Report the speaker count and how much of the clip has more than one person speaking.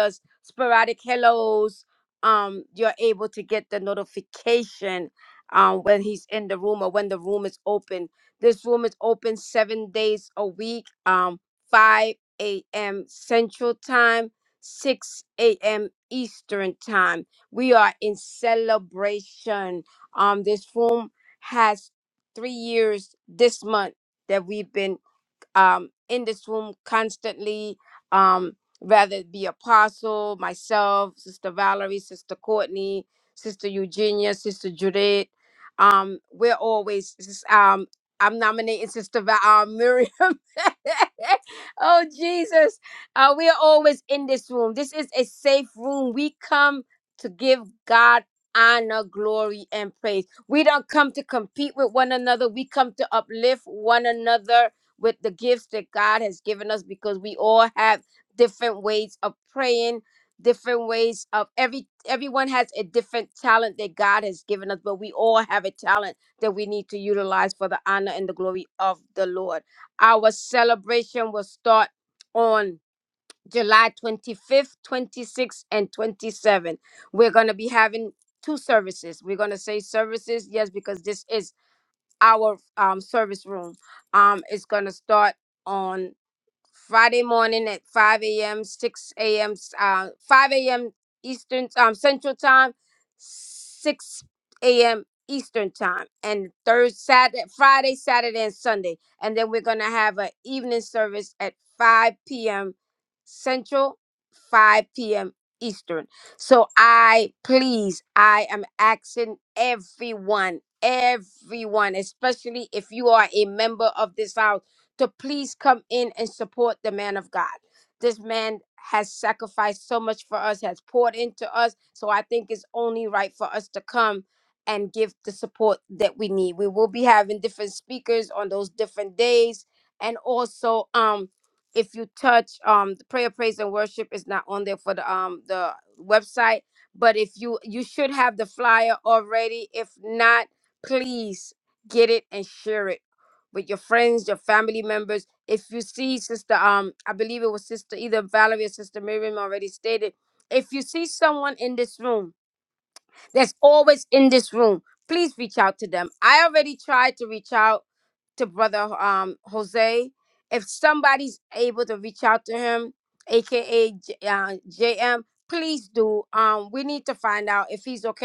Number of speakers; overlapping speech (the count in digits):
1, no overlap